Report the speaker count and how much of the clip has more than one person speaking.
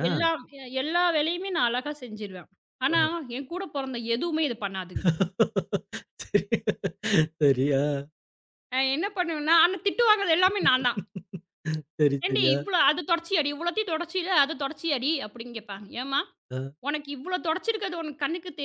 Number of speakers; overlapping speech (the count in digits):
2, about 2%